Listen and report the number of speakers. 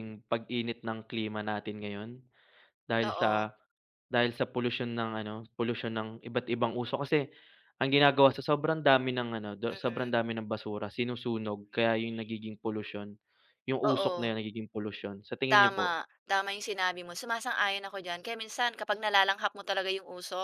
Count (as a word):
two